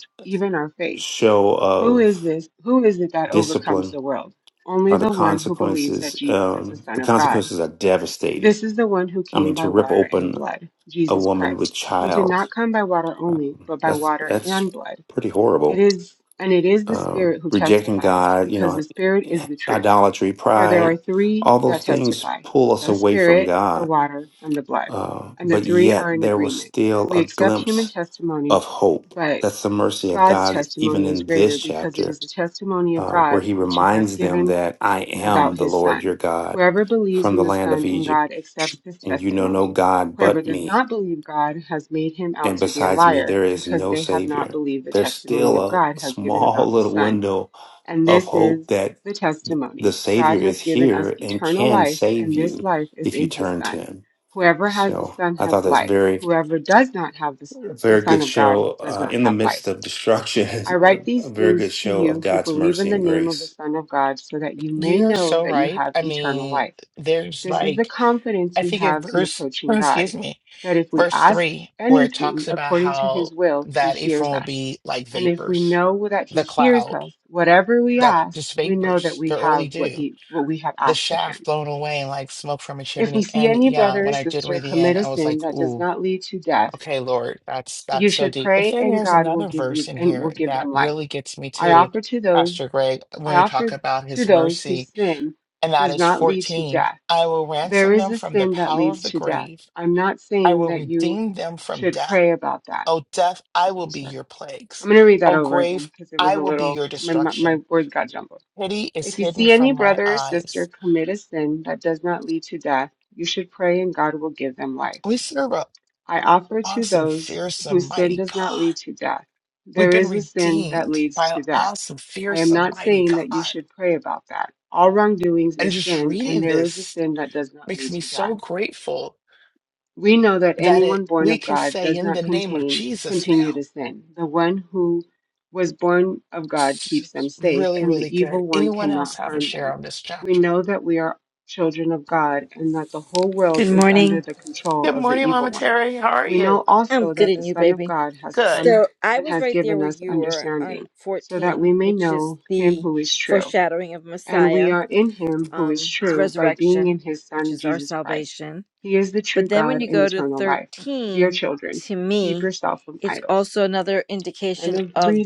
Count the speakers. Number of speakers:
four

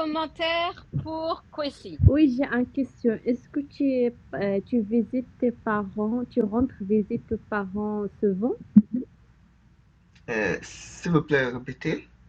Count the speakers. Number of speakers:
three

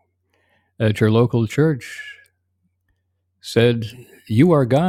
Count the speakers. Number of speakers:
one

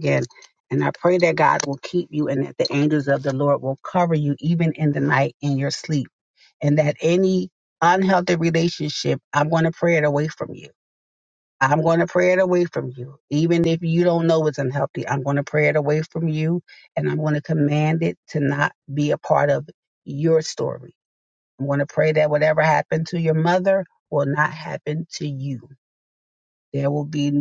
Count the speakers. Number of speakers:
one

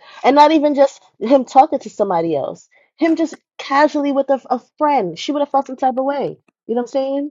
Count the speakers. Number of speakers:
one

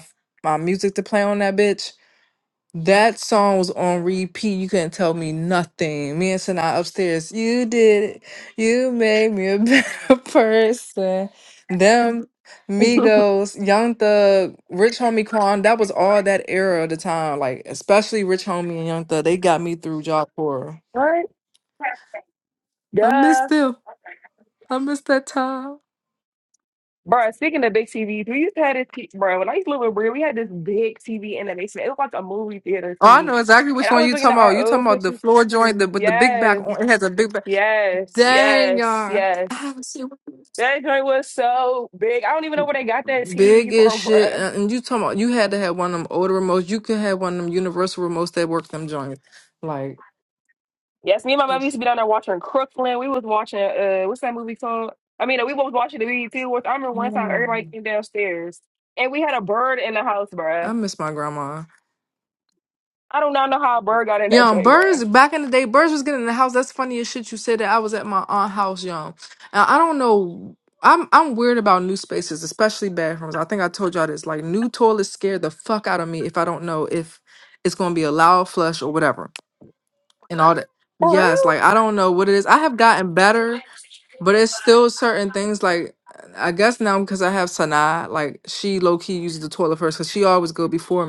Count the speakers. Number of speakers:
two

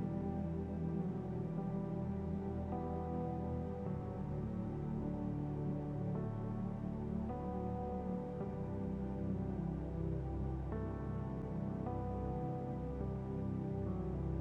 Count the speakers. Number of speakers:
zero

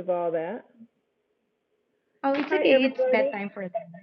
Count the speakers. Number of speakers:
two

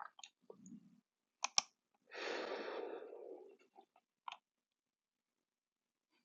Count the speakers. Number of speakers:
zero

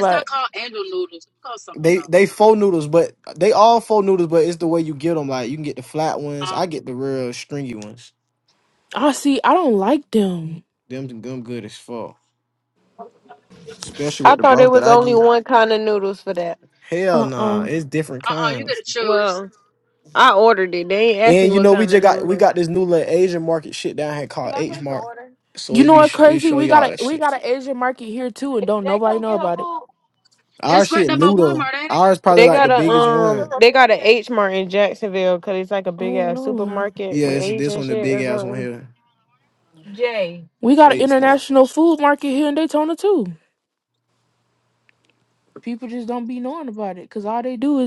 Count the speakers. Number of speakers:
four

